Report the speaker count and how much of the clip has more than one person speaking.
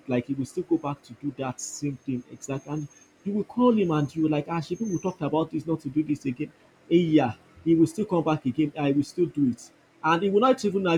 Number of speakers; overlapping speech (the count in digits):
1, no overlap